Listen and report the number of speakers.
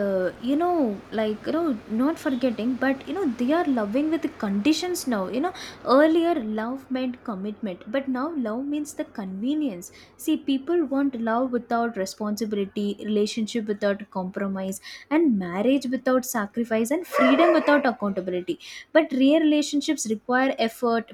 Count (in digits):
1